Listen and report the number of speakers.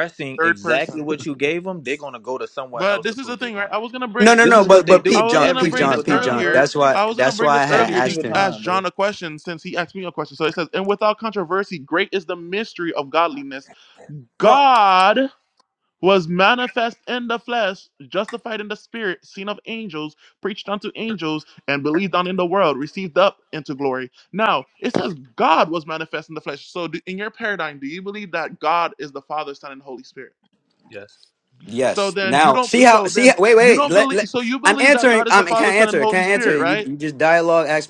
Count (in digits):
3